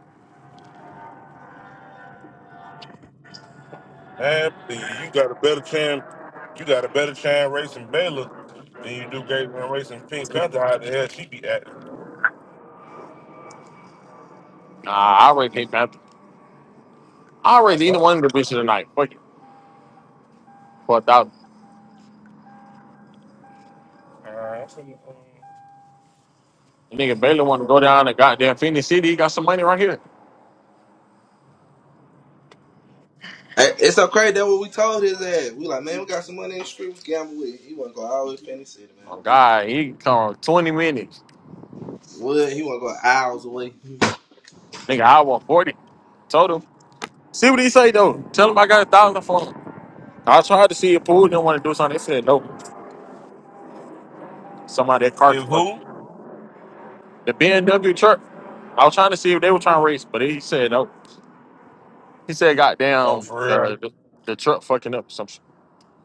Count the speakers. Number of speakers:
3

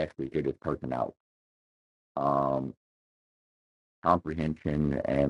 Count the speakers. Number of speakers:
1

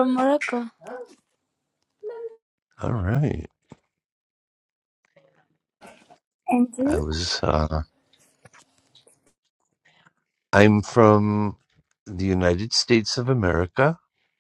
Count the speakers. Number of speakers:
2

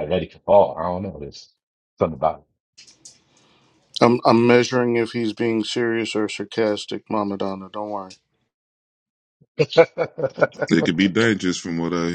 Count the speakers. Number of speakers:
3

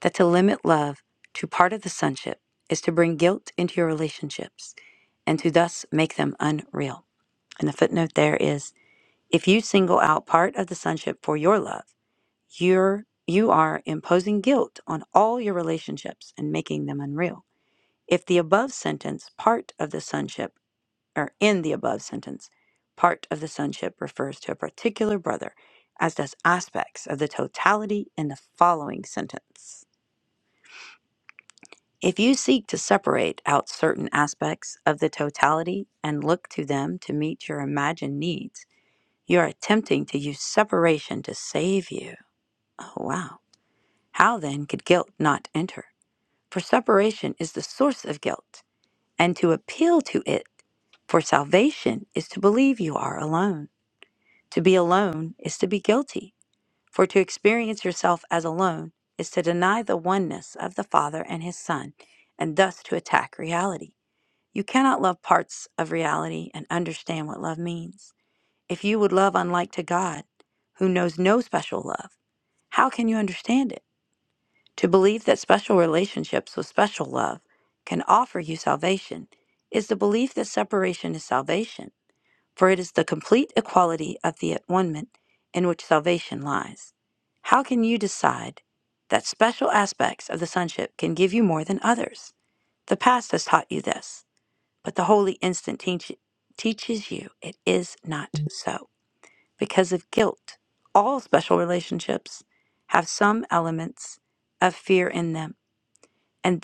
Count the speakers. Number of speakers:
1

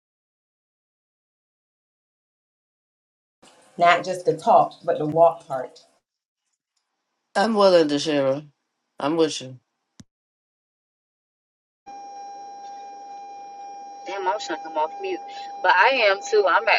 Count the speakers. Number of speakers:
3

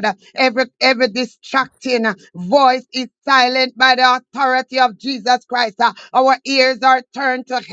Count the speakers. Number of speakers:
1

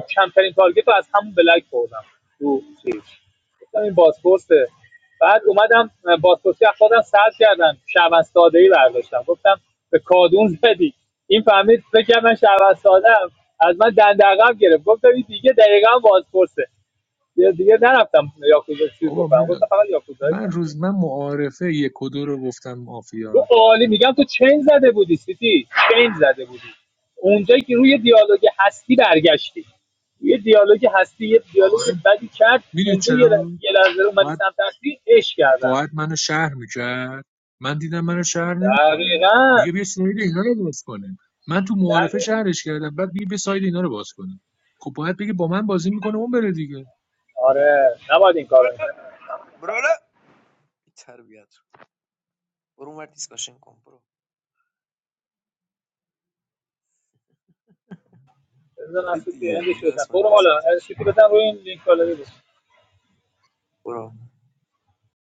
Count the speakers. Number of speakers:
3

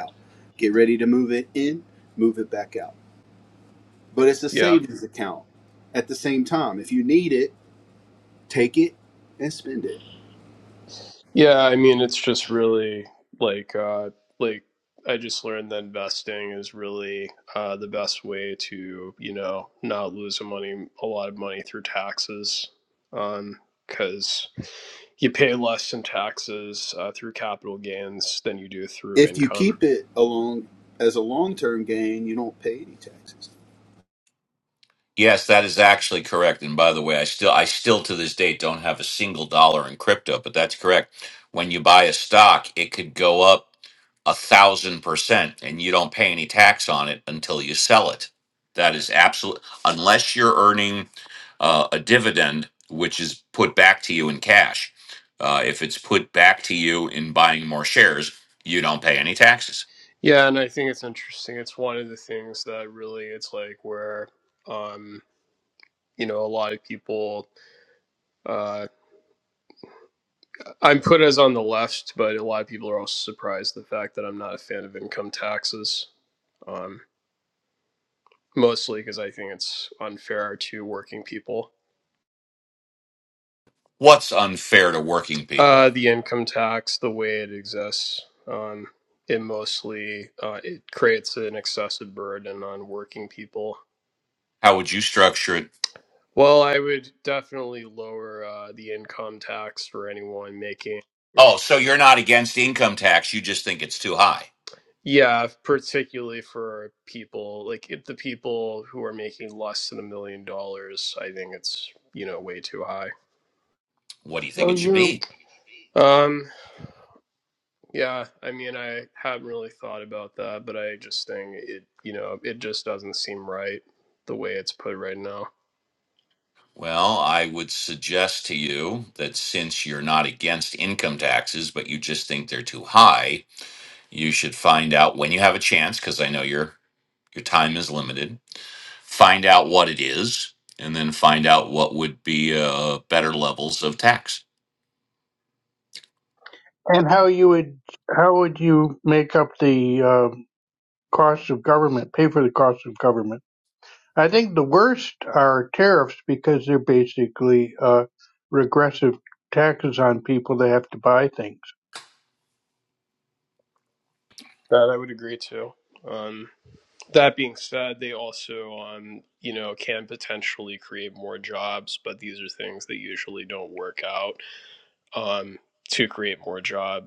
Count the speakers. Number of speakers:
4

